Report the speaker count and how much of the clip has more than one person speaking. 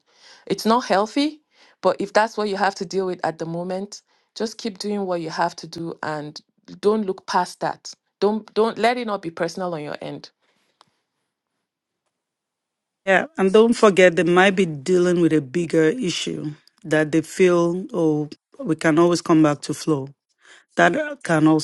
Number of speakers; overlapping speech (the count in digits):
2, no overlap